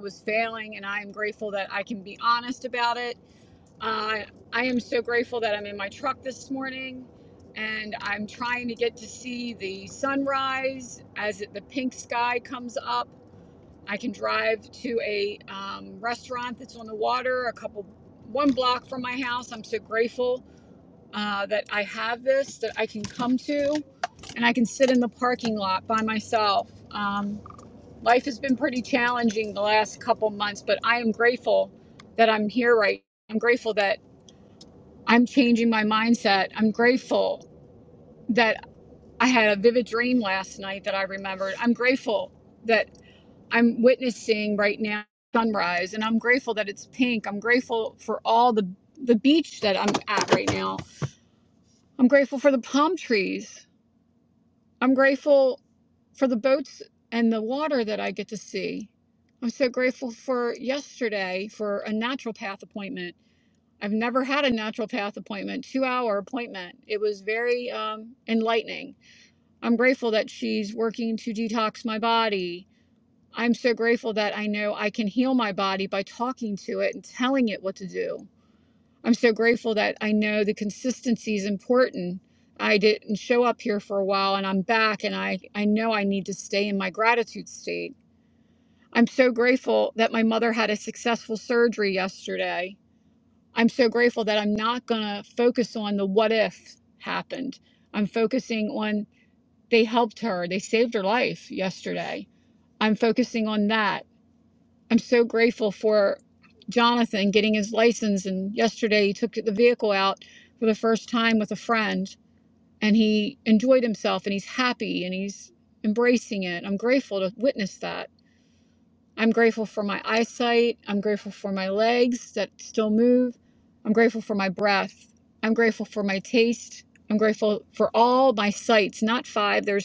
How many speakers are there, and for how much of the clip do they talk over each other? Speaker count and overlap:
one, no overlap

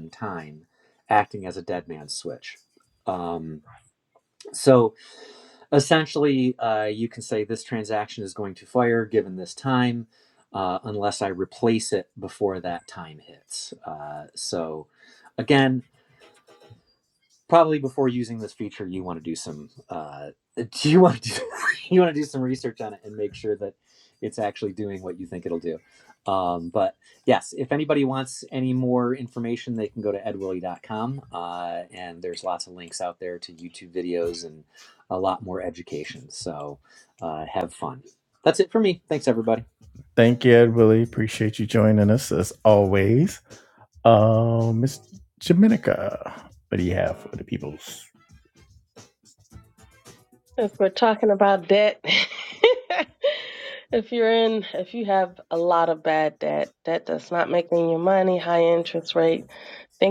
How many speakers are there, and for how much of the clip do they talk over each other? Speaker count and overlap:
three, no overlap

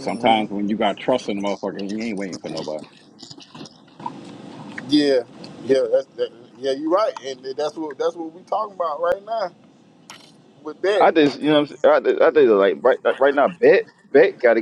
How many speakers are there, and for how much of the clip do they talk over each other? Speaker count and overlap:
three, about 1%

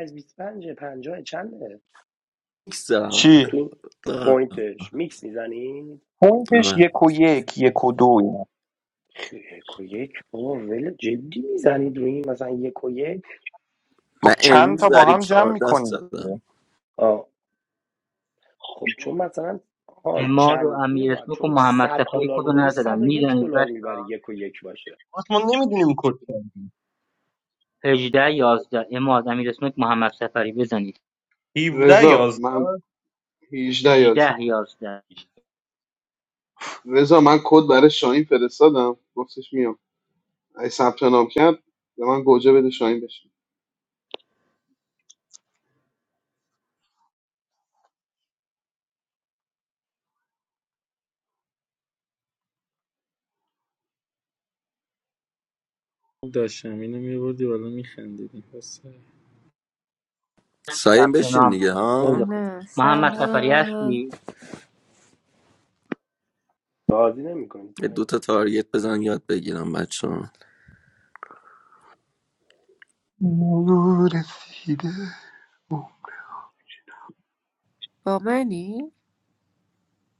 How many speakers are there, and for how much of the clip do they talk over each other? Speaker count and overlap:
eight, about 13%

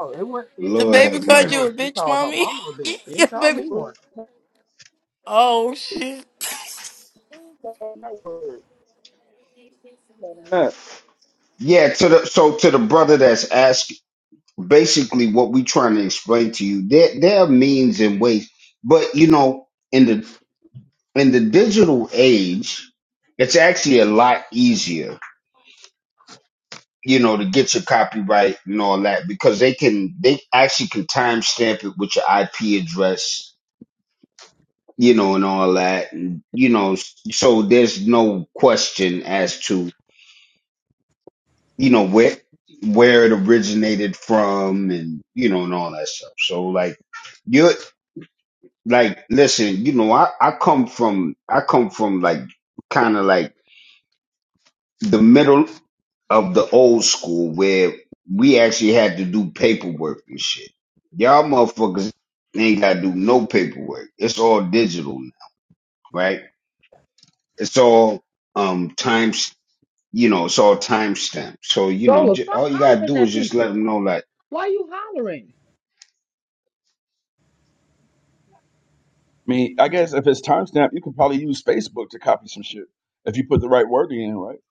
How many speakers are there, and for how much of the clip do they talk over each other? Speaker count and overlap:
four, about 5%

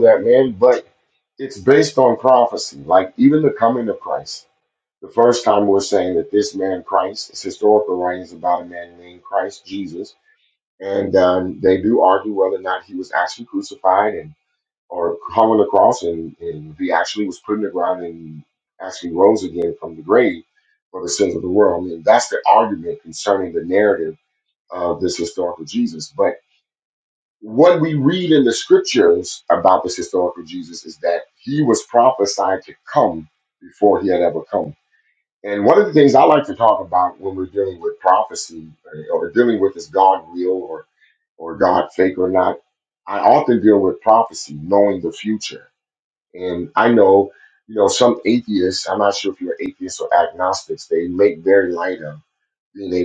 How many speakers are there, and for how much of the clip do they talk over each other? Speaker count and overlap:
one, no overlap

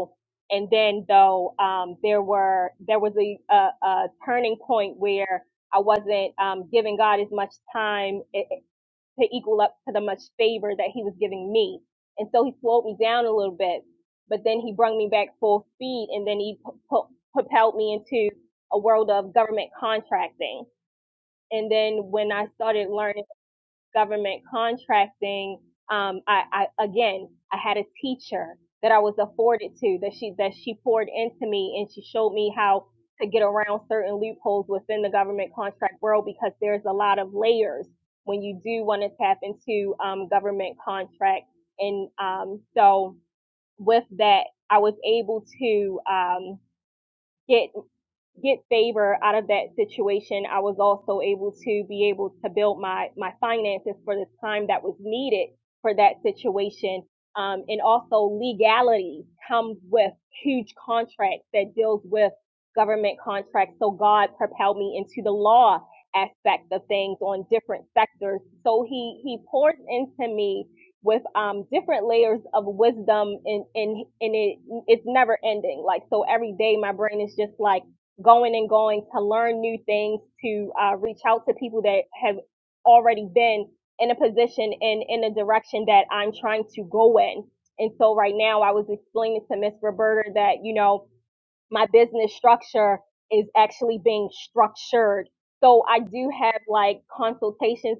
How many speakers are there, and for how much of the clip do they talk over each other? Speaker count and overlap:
one, no overlap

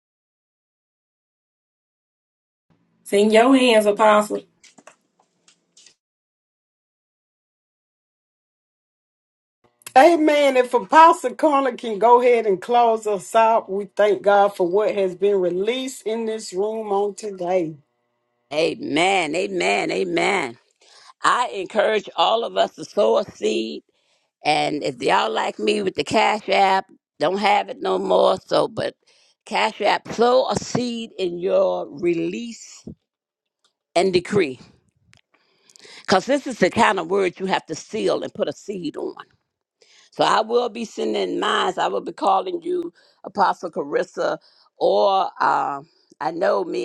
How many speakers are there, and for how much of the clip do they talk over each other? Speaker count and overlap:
three, no overlap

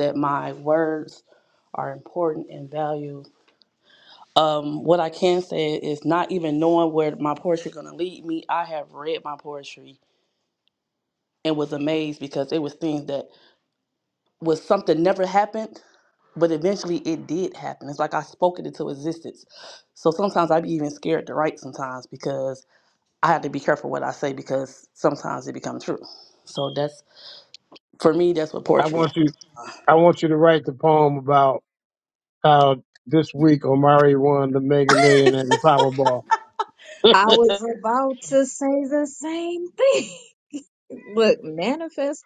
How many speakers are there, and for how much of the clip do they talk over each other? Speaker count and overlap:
three, about 1%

